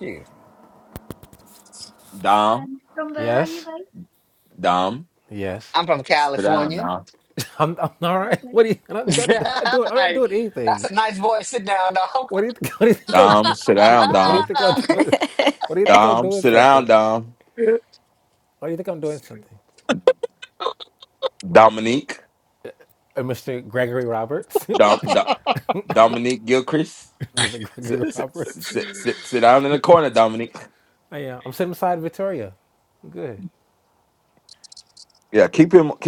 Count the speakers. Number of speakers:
4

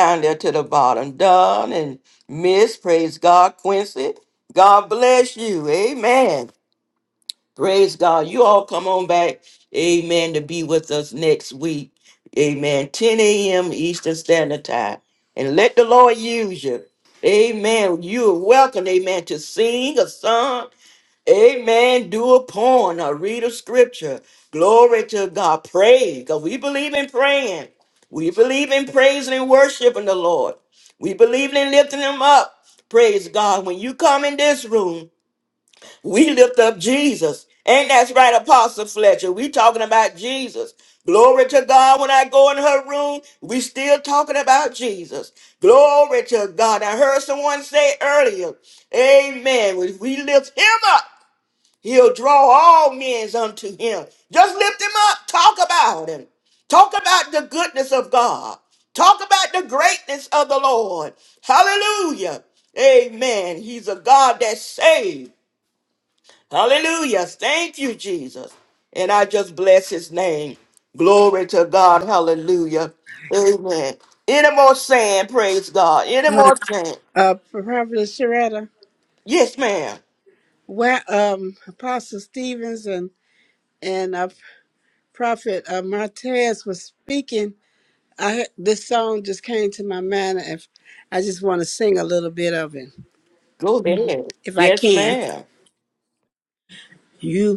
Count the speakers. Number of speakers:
2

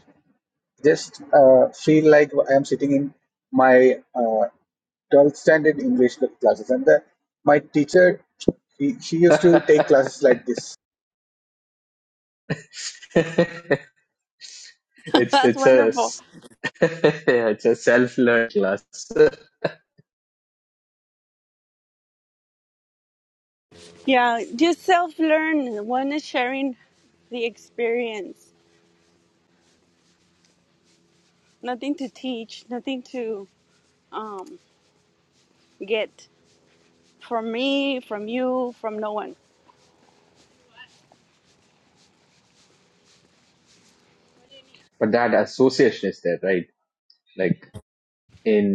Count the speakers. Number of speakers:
3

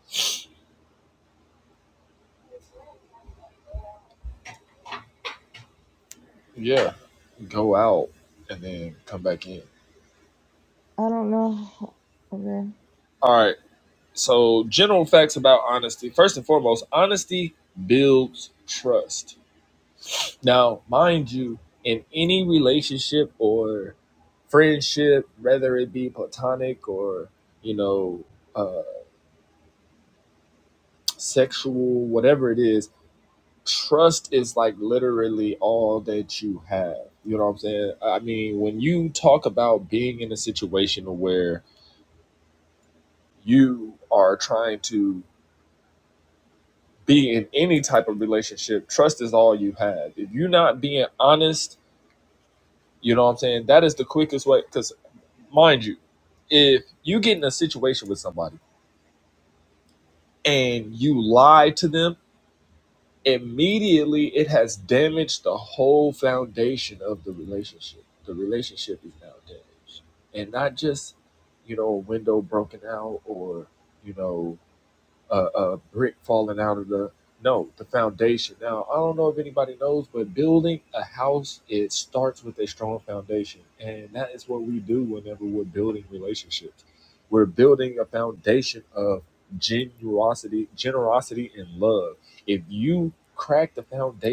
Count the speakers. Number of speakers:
2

